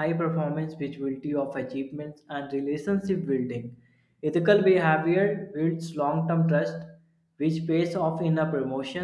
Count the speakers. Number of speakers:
1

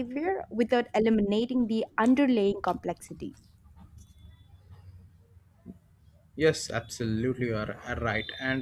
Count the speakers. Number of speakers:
2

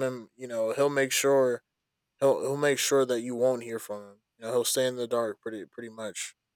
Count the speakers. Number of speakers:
1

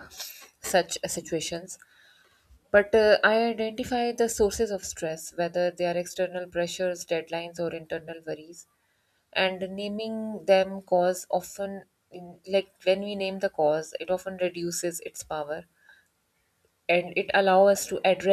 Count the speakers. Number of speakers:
1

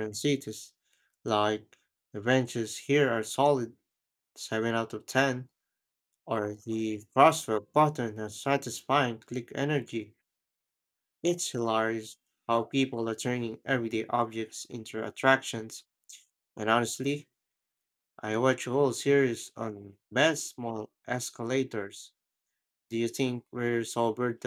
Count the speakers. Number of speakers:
1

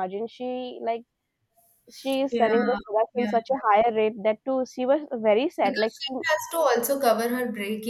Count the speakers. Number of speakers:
2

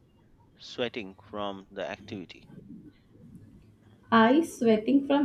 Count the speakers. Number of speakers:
2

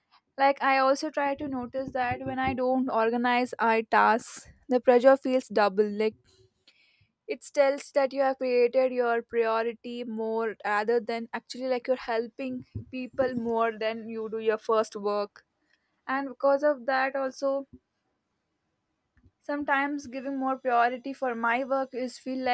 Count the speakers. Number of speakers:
1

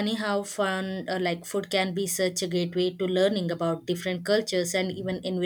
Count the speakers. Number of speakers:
1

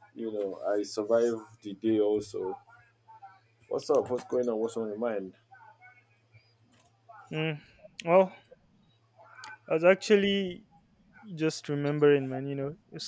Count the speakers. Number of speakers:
2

